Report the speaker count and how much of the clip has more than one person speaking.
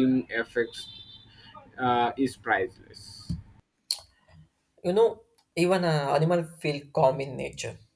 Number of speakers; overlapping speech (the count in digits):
2, no overlap